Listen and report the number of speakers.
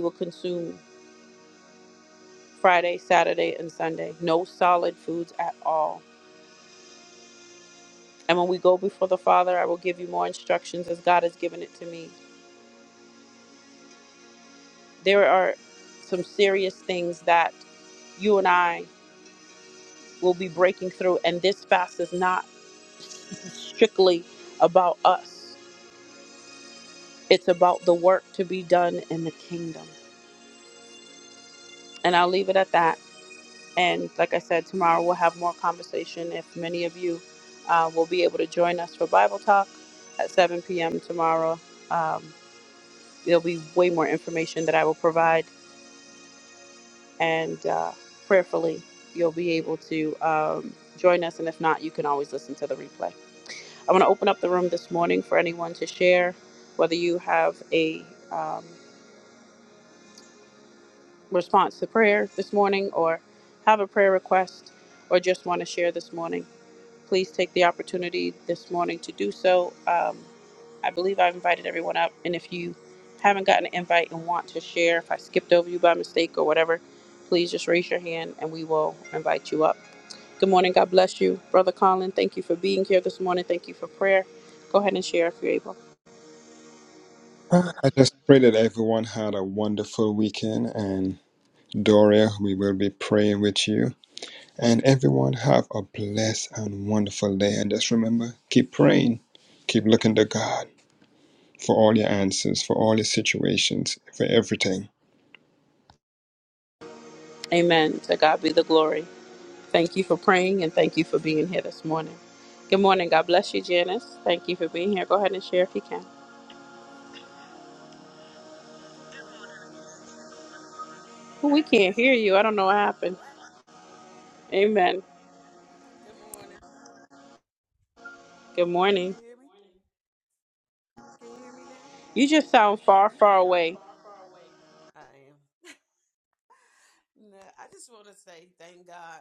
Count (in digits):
3